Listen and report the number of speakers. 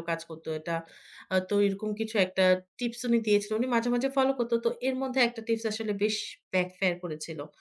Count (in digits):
1